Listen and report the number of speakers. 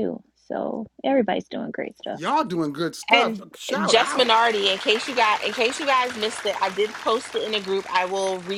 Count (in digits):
3